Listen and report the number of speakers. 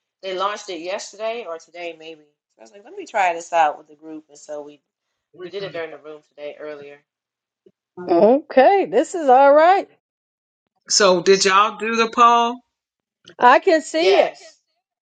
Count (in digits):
3